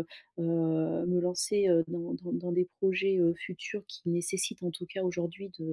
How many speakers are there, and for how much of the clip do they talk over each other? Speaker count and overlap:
1, no overlap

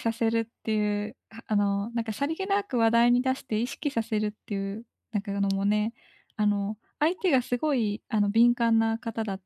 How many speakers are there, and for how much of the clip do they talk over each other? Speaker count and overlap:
1, no overlap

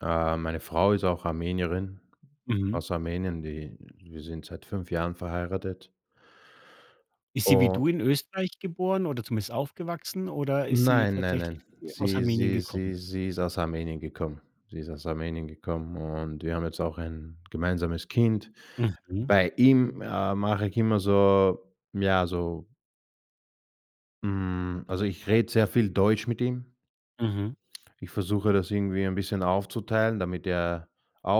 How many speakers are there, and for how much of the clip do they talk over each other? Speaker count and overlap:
2, about 8%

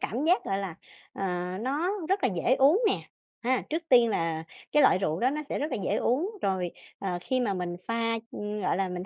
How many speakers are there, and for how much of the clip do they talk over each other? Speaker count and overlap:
1, no overlap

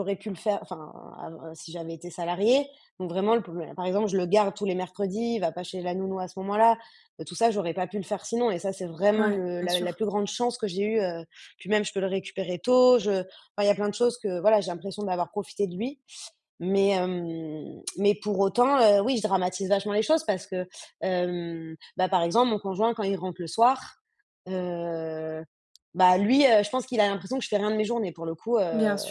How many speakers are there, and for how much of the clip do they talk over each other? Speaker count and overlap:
2, about 3%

